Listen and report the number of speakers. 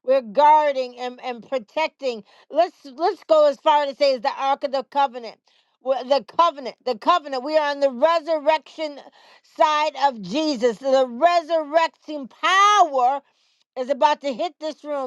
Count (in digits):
1